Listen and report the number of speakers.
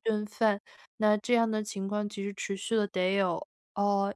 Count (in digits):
1